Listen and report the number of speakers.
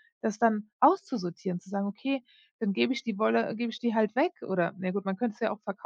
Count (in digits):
1